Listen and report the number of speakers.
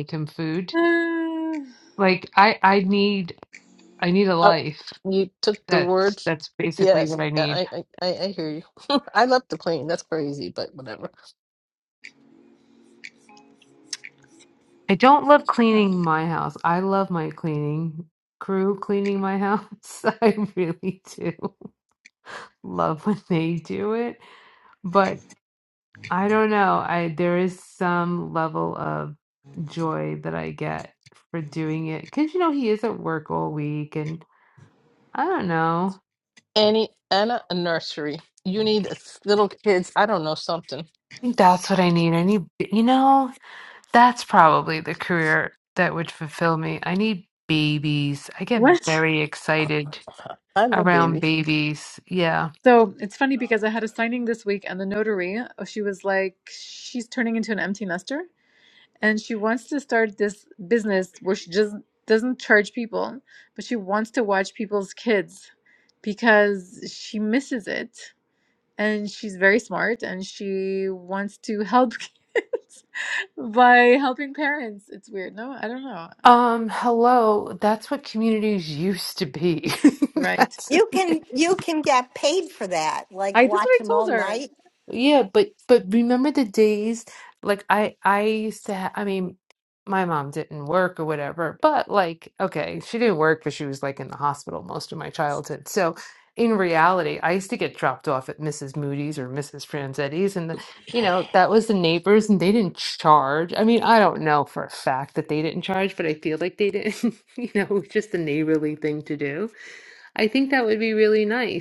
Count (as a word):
four